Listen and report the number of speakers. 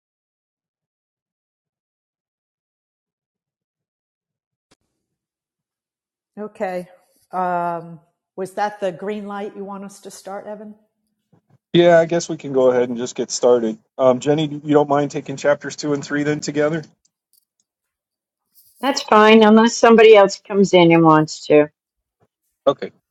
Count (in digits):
3